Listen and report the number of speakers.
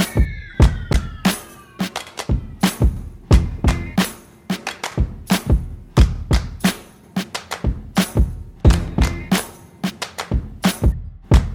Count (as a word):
zero